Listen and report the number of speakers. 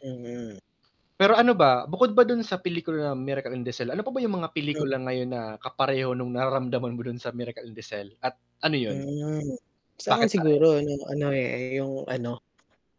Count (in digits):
2